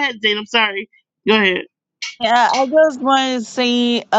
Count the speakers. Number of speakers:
two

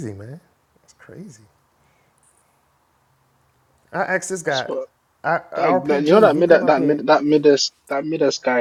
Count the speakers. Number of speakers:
two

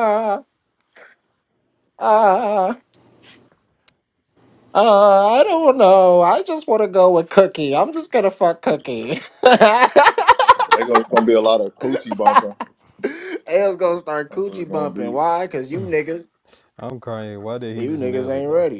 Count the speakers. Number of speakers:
three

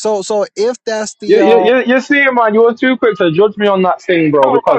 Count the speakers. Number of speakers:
two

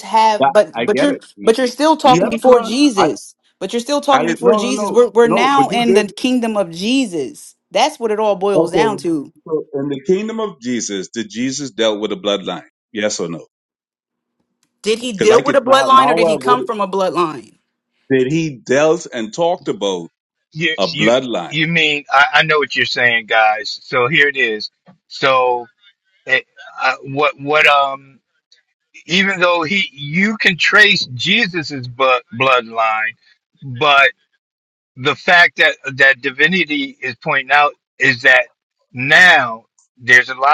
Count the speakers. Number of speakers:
three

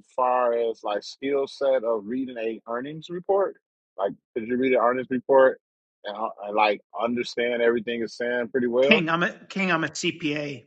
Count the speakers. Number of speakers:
two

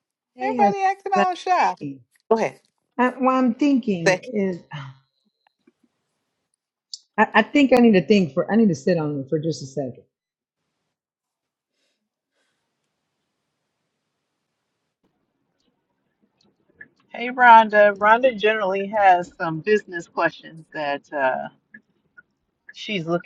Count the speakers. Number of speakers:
three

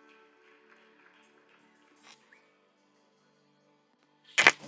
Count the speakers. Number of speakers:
zero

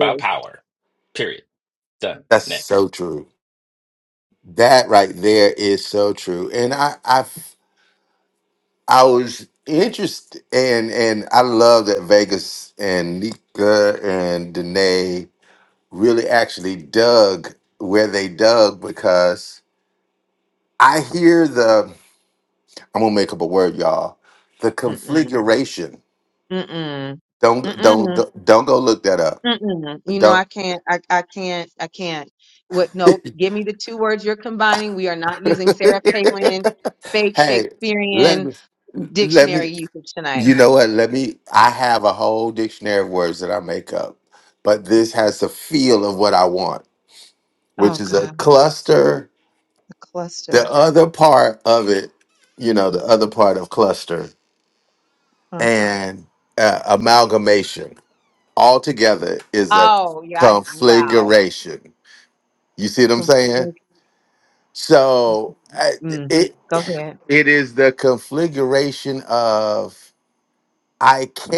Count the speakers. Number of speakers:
three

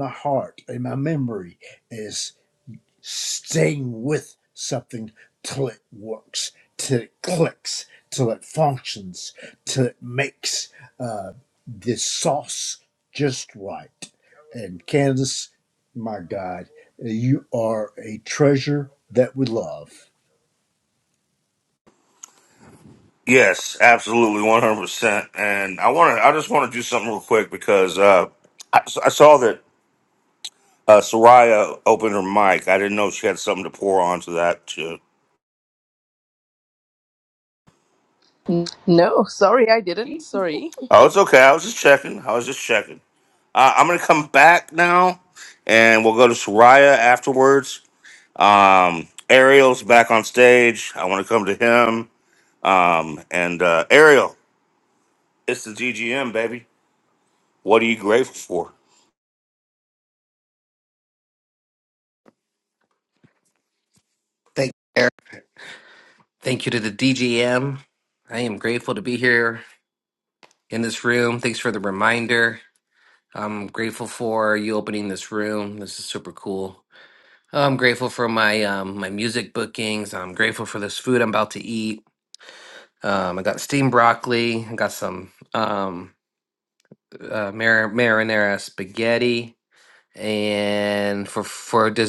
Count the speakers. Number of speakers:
four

